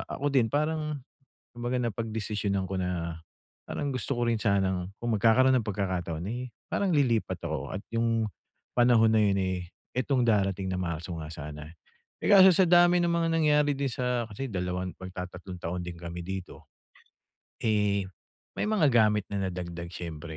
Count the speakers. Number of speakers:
1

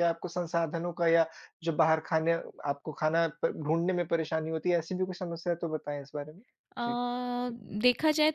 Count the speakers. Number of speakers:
2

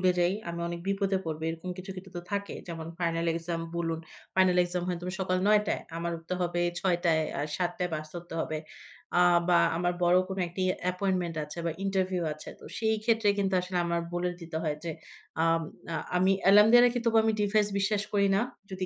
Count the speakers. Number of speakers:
1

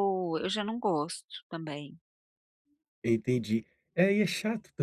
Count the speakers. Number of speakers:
2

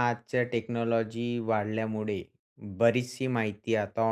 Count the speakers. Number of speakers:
1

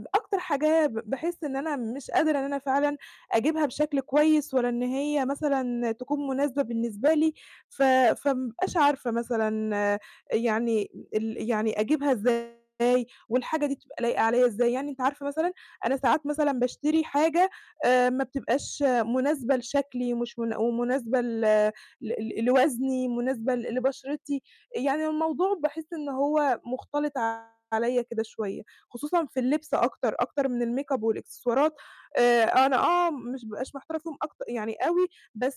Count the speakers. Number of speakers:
1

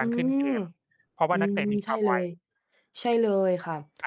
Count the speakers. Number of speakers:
2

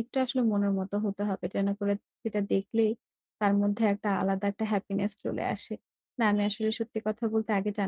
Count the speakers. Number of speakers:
1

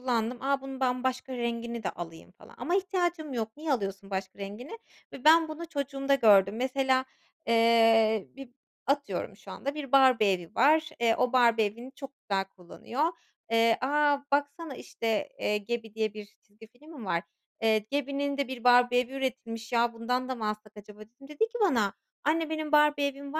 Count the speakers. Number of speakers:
1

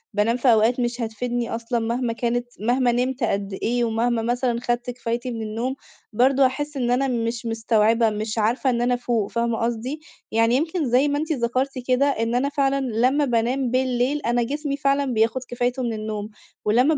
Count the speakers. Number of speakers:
1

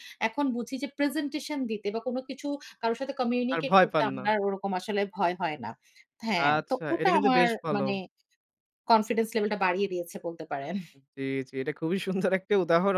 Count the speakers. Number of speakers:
2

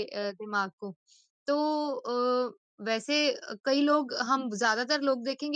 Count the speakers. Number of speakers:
1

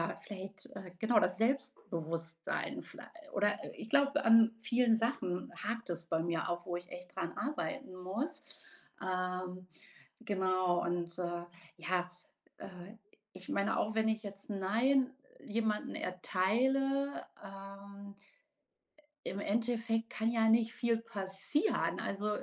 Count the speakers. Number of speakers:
1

